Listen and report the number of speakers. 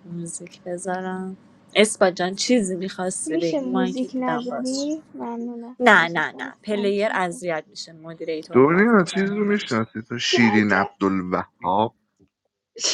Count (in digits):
3